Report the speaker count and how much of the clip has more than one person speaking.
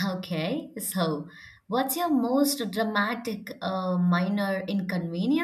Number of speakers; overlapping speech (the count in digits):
1, no overlap